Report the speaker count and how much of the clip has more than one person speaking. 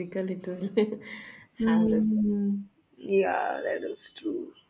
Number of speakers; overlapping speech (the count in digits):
2, about 10%